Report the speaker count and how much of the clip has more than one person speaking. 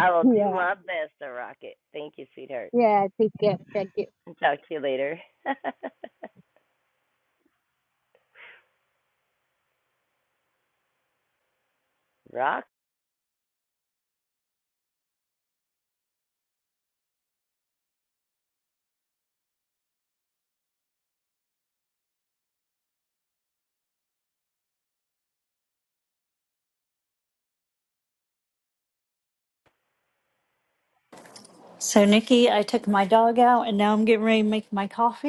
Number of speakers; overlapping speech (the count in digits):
3, about 1%